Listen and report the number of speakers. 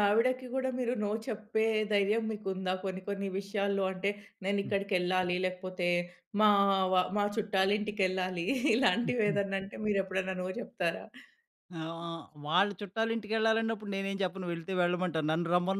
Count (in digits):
2